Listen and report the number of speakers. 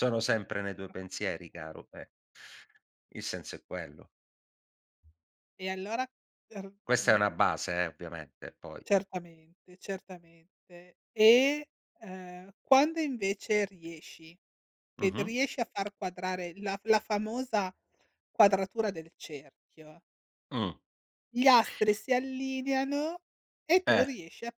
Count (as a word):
two